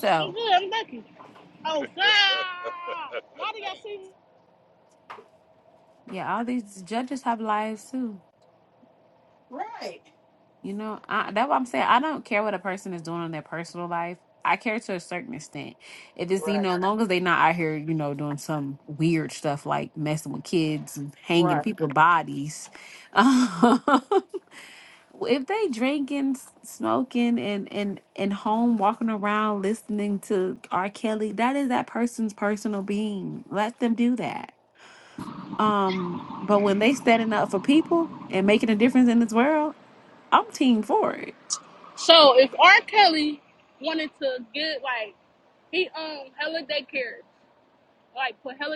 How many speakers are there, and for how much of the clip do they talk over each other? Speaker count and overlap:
3, about 2%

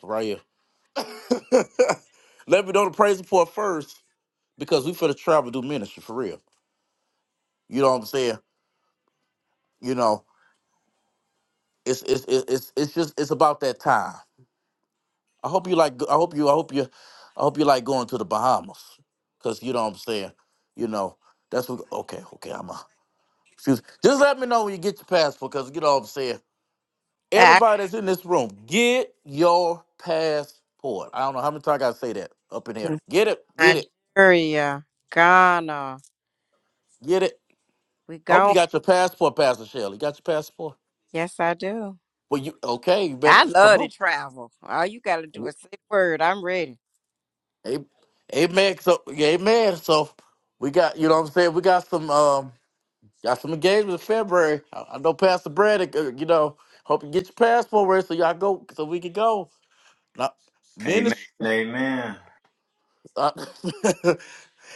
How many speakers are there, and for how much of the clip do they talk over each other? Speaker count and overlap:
3, about 3%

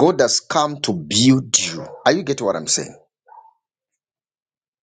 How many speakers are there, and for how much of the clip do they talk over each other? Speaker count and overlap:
1, no overlap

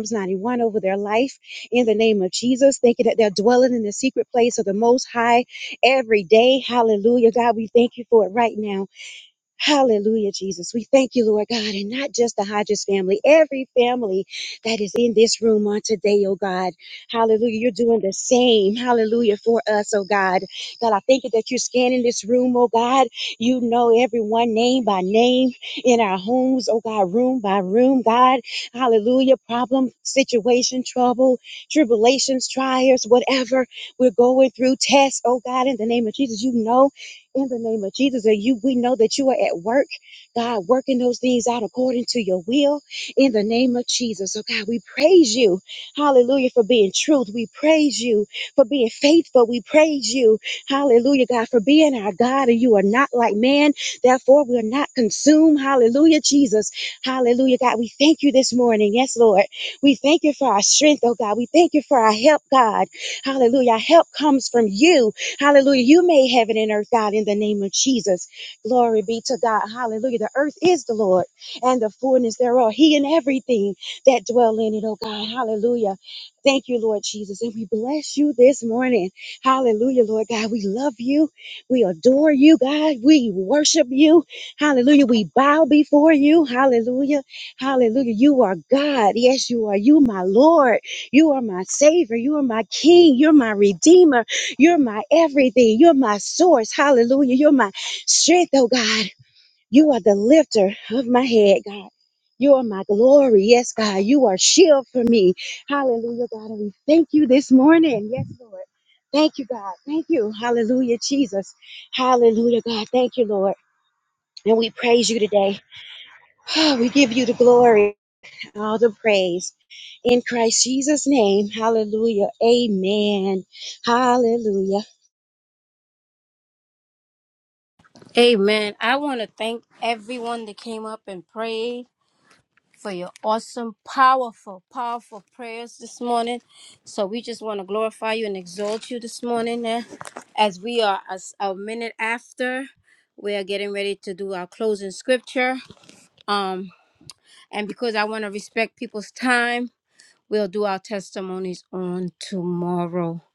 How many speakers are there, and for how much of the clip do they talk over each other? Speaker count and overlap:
2, no overlap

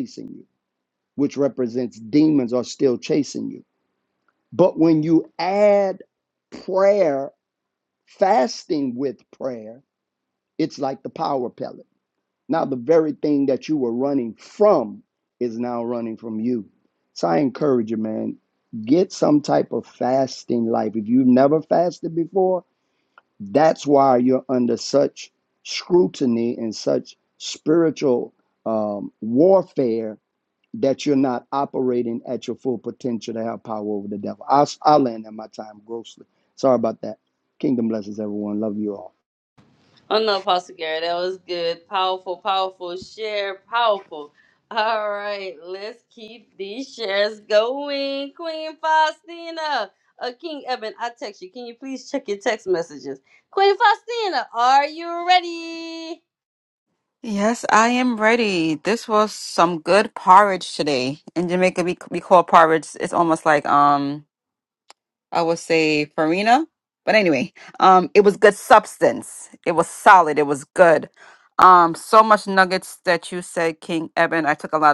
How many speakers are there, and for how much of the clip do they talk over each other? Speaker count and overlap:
3, no overlap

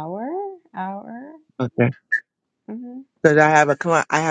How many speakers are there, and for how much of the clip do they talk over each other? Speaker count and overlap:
2, no overlap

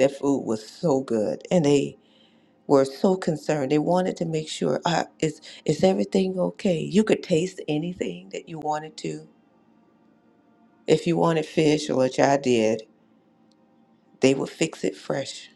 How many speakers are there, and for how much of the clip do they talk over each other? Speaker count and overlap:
1, no overlap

